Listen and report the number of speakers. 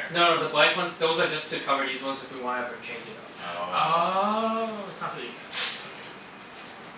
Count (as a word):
three